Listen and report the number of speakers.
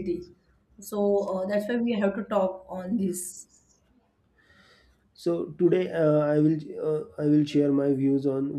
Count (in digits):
2